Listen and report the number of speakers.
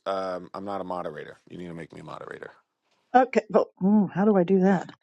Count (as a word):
two